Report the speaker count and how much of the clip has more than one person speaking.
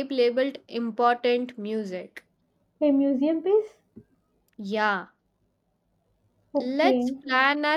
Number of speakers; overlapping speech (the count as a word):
two, about 8%